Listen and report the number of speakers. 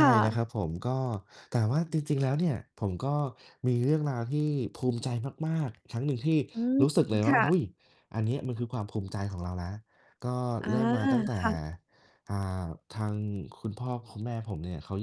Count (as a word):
two